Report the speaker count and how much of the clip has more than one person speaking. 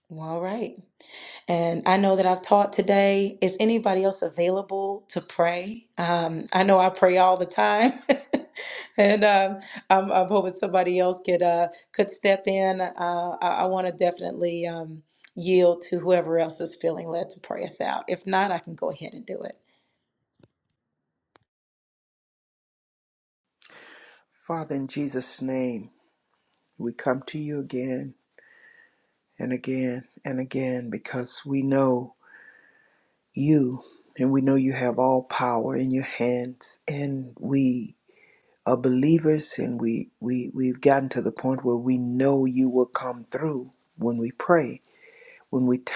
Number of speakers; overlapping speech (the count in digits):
2, no overlap